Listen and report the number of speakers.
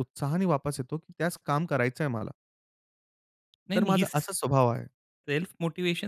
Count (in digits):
2